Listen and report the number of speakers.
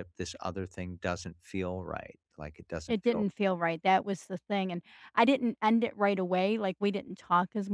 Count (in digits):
2